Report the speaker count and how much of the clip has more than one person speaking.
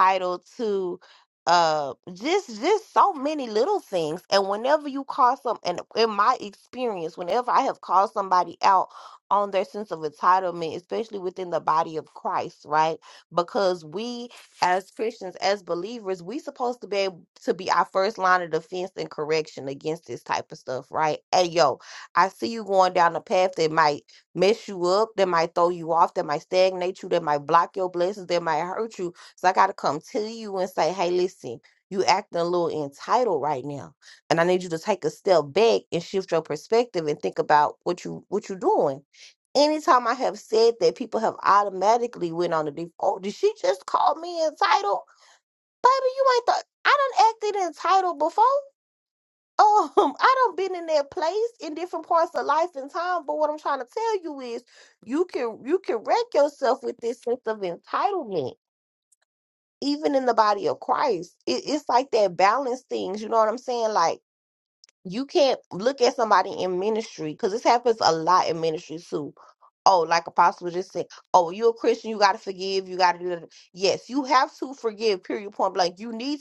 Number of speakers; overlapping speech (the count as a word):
one, no overlap